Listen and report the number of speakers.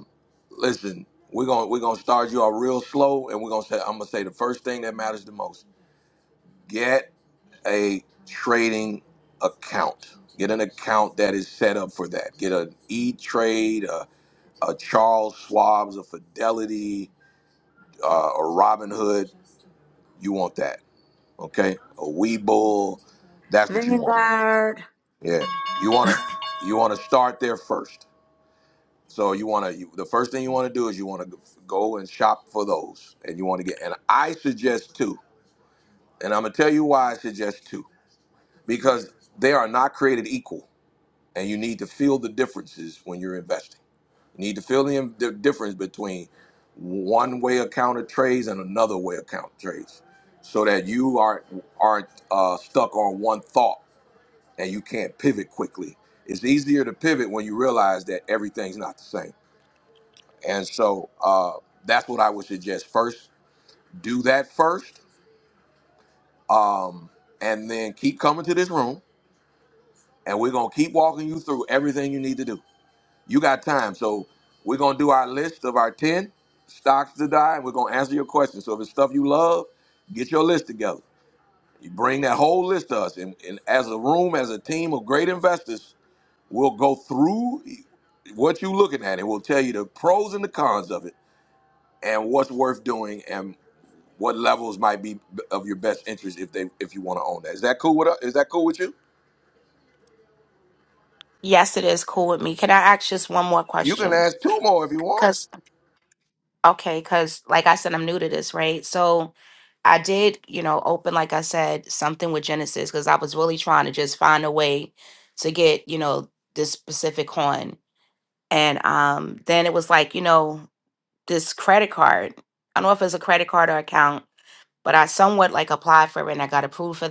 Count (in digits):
3